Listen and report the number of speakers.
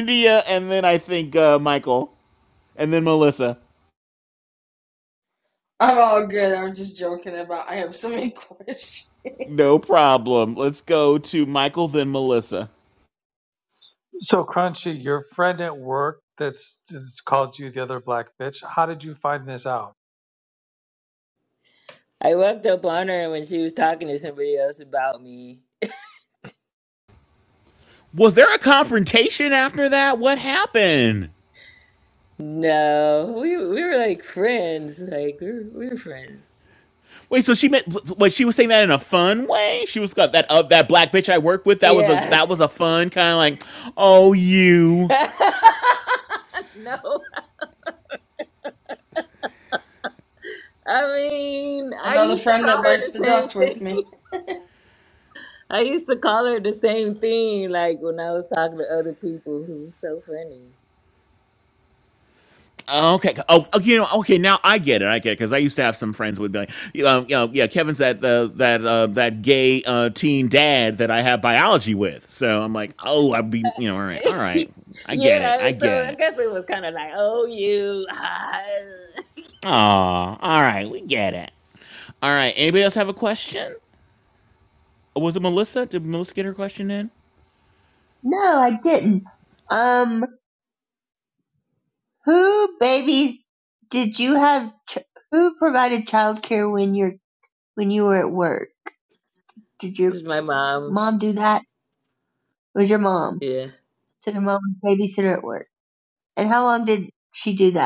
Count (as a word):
five